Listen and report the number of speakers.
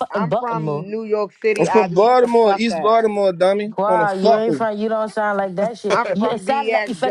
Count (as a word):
three